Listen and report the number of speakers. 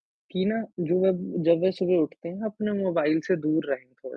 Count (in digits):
1